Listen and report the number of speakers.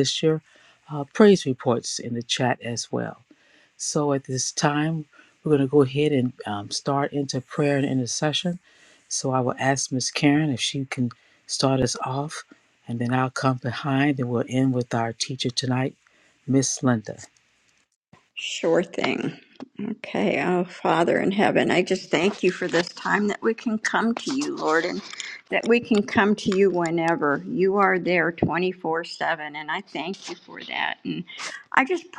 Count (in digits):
2